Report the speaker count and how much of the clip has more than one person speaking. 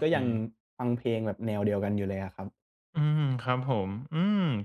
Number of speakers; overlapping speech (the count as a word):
two, about 3%